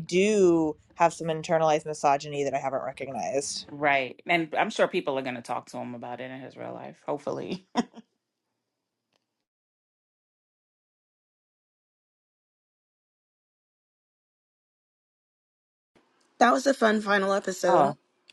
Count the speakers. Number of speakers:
3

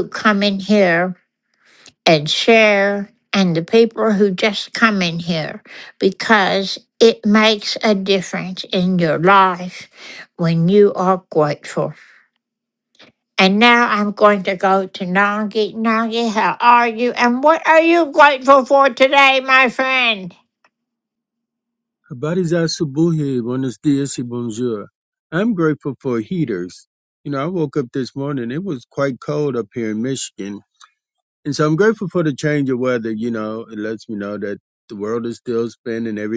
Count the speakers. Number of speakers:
2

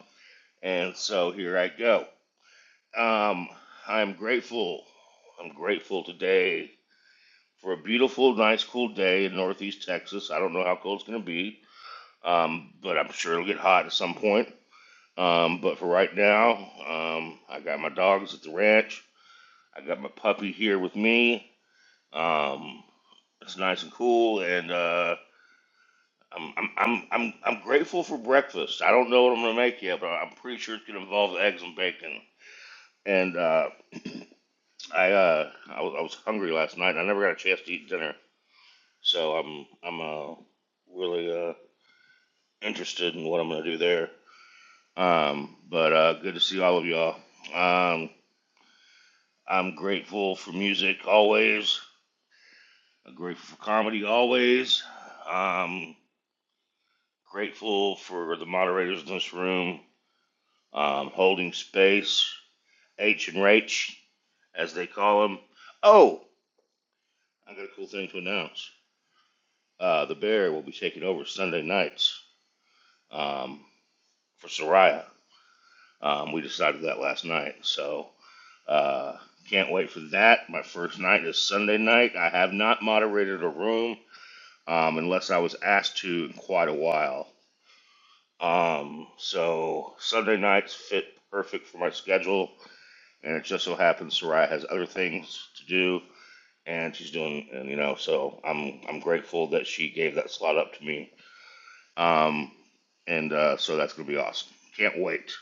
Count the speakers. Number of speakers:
1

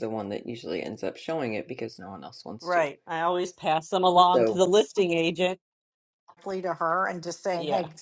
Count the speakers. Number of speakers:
3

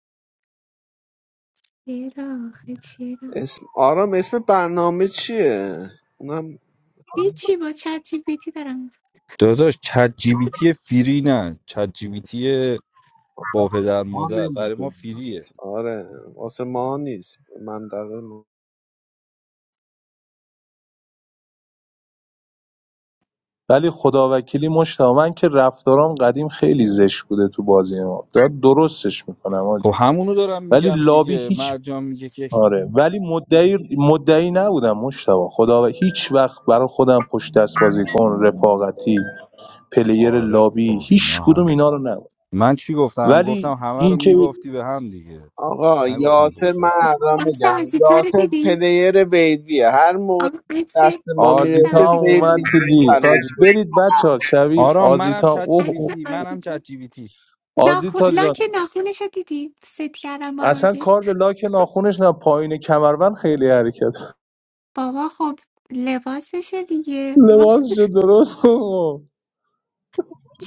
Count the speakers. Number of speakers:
4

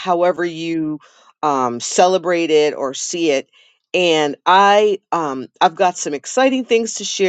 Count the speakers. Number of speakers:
1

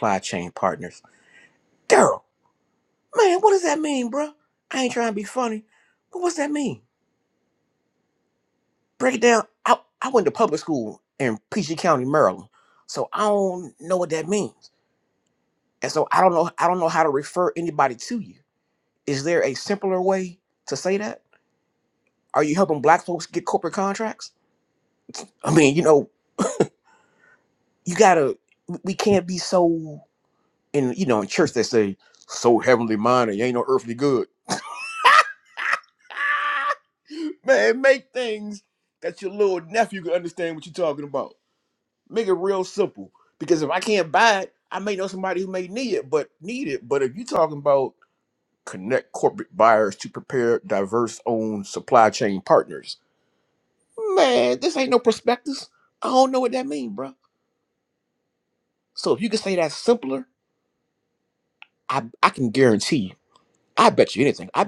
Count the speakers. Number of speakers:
1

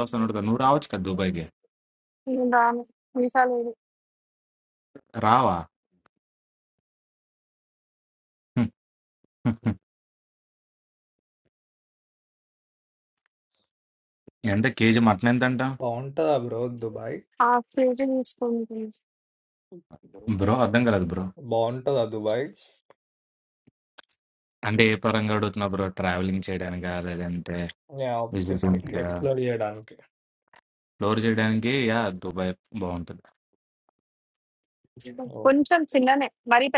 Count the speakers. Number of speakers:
3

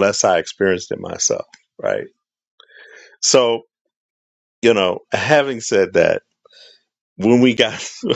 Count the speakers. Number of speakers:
1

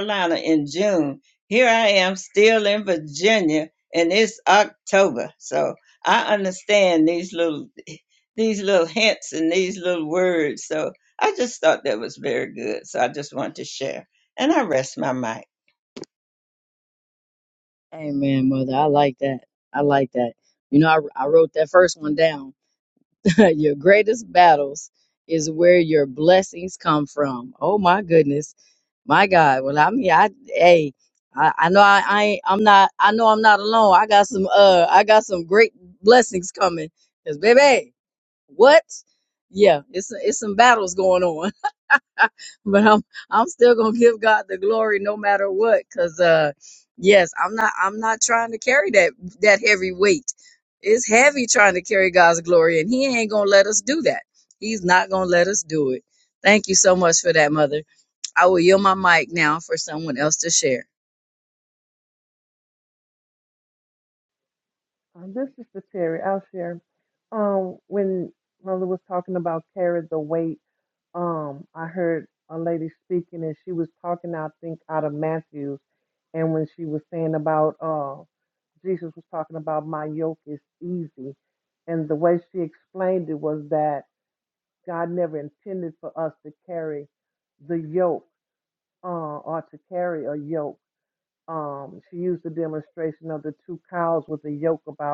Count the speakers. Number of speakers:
3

